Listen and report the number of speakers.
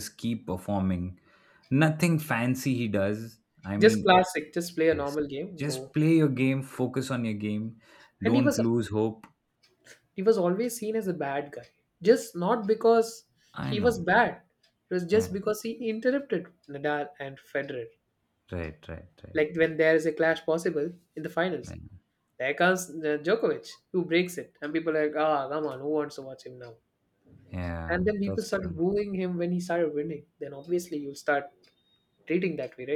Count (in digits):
2